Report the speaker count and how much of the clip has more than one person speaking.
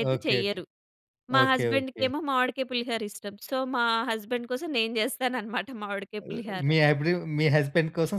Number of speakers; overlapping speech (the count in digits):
2, about 20%